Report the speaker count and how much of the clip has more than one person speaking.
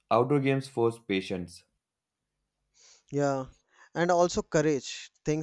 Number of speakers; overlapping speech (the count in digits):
2, no overlap